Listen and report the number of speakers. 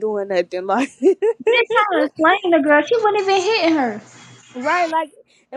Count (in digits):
2